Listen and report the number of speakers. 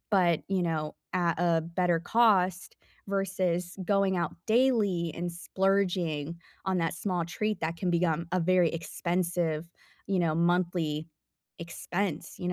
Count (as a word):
one